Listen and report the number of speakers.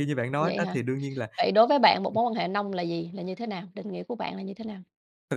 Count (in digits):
2